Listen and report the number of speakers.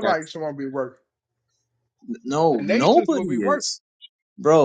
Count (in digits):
2